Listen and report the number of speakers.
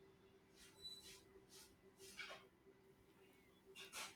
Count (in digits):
0